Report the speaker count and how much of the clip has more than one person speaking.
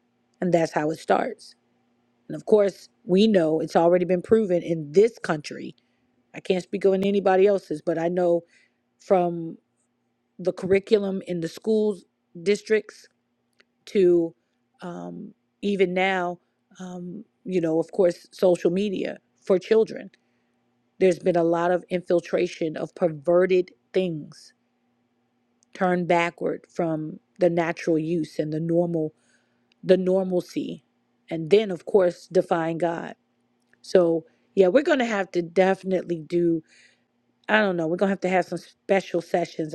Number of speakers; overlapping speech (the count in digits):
1, no overlap